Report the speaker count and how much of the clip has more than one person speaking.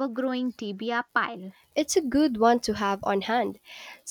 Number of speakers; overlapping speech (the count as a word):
two, no overlap